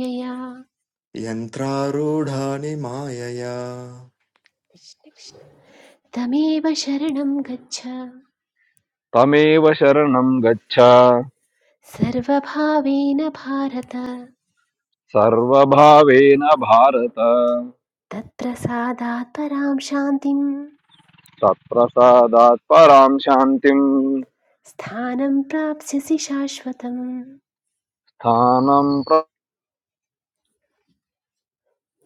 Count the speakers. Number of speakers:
three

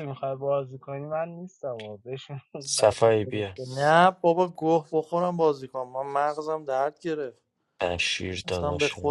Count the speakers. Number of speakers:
three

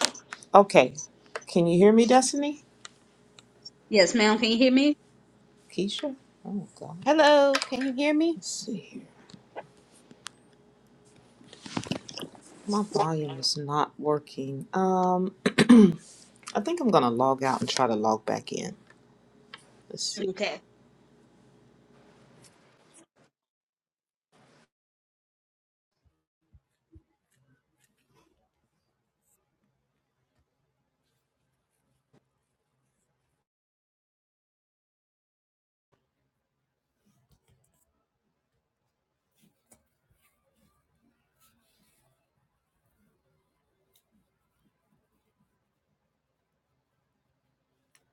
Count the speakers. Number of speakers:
three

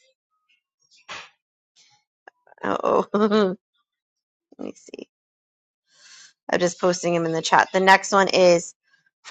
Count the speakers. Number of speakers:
one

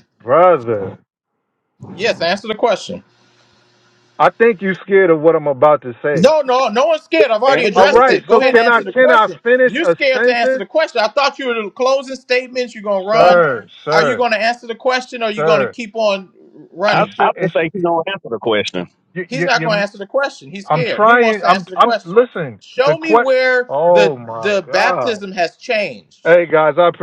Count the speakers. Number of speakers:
three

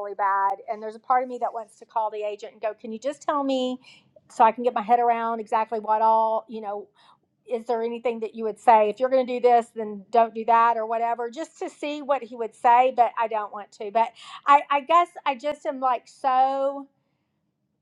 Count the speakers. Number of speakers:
one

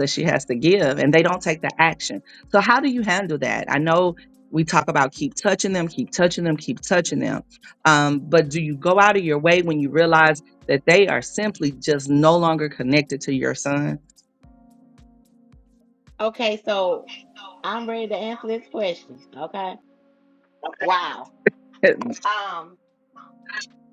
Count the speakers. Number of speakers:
two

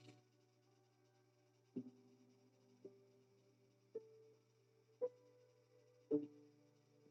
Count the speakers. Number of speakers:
zero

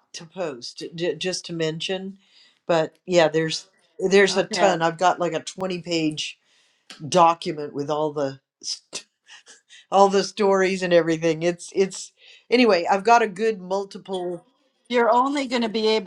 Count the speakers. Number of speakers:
two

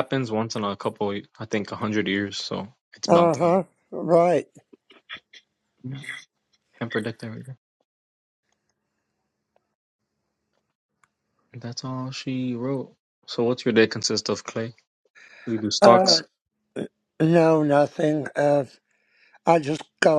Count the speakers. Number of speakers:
two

